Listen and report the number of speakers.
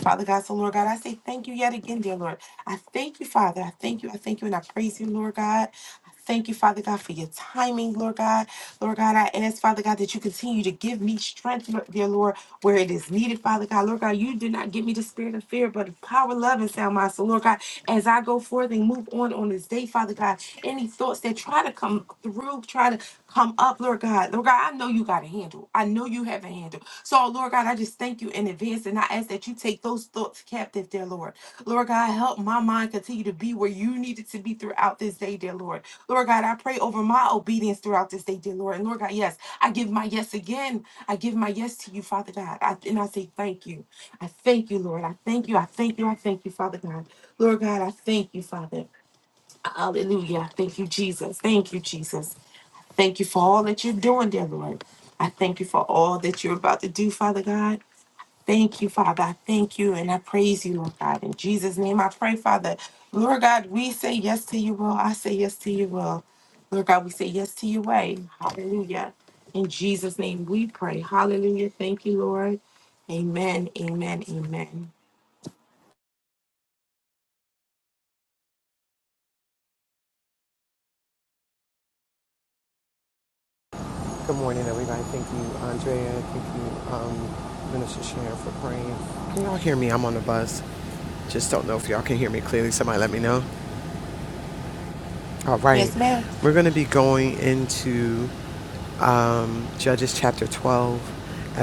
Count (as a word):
two